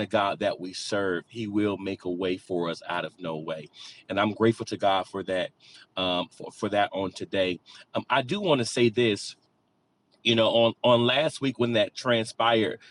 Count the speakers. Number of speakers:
one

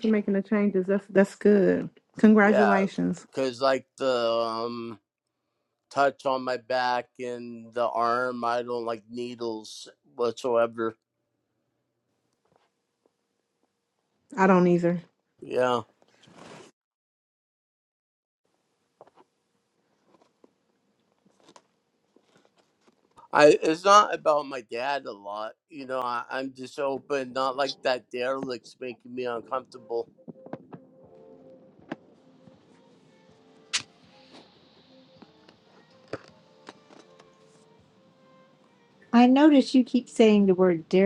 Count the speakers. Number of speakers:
three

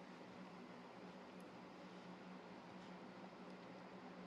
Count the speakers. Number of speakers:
zero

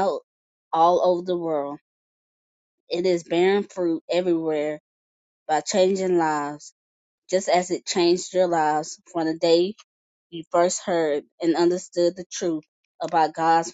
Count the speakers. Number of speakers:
one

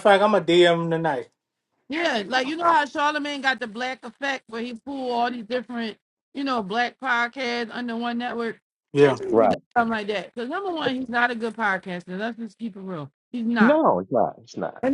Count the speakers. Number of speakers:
three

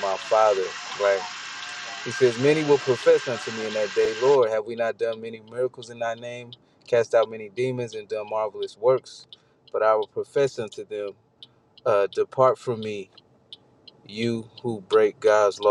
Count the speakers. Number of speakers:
one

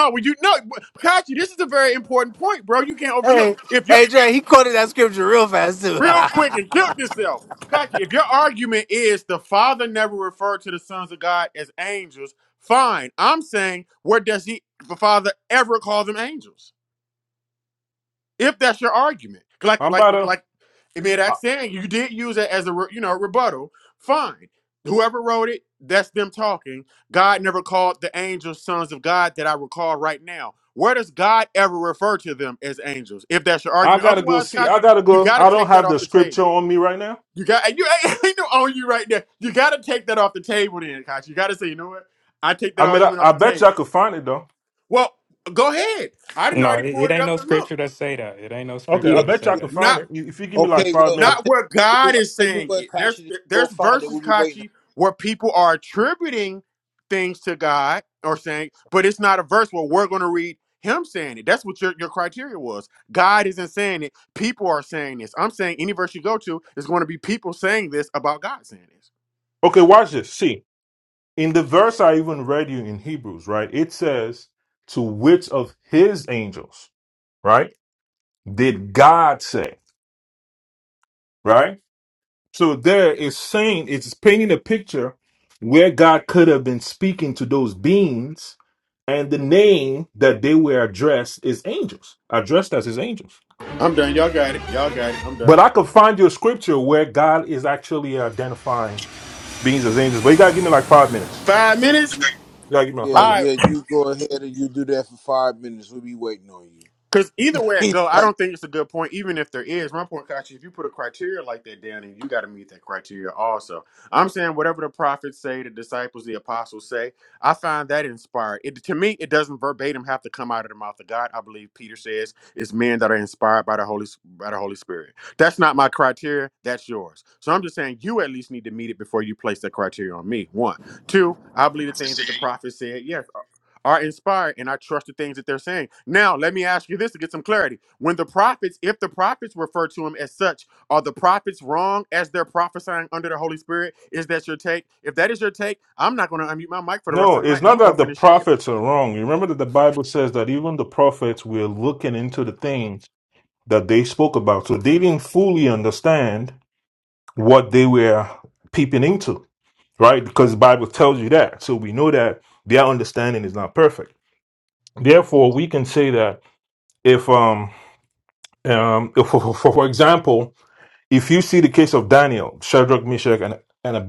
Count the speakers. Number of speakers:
five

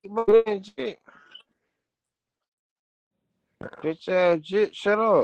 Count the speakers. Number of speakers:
one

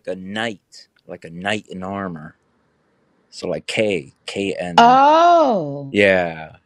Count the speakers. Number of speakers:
two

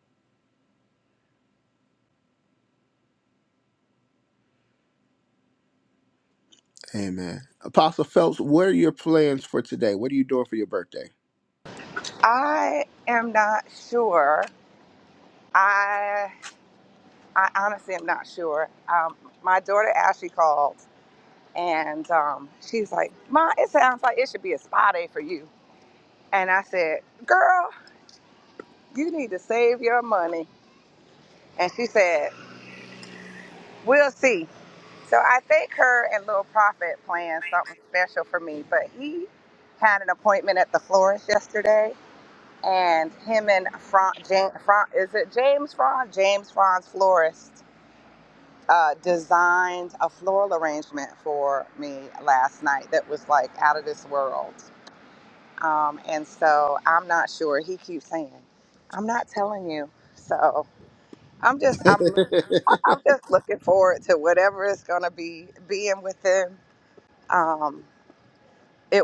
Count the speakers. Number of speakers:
two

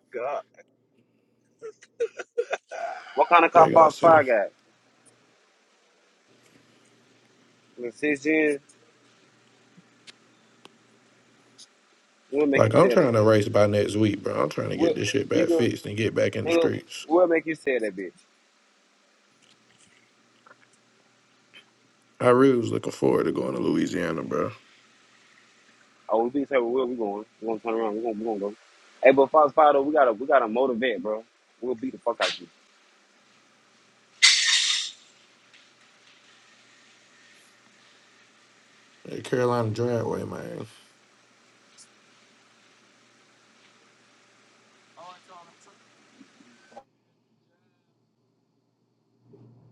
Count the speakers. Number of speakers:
three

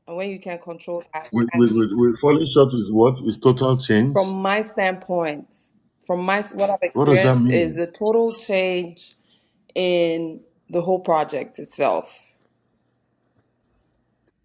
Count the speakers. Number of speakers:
two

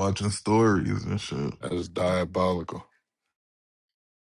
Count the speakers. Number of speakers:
two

